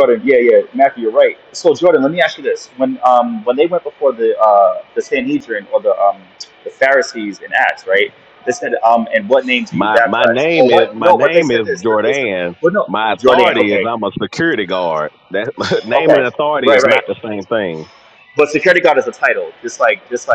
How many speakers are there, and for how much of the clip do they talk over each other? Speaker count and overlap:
two, about 19%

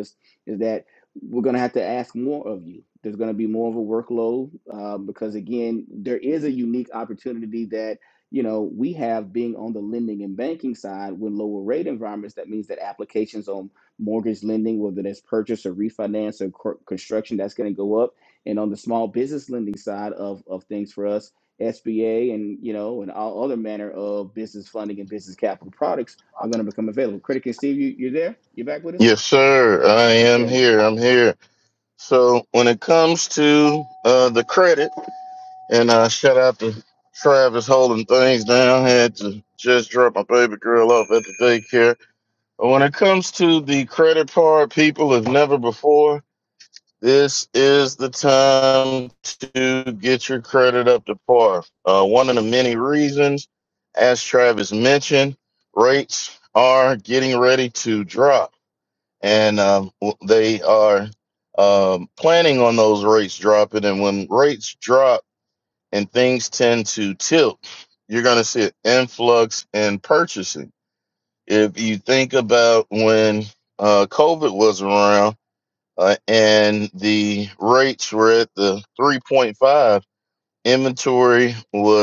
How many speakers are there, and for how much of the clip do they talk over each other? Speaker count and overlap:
two, under 1%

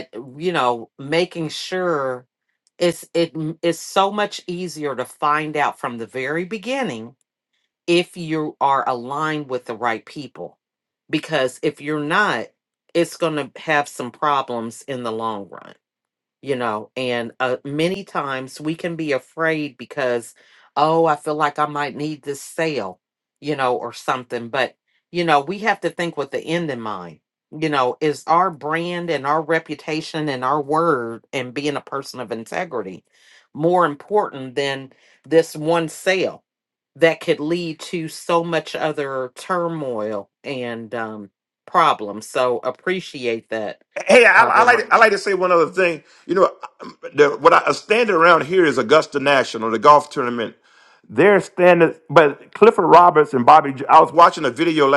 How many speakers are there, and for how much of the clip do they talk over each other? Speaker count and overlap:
two, about 1%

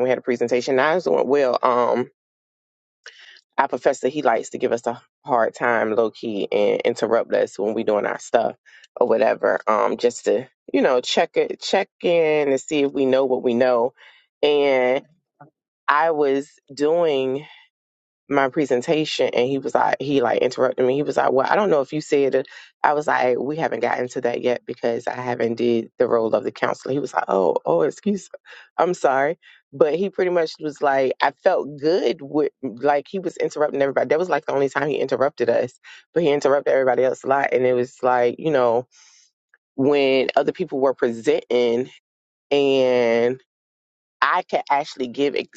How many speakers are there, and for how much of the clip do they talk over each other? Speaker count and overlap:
one, no overlap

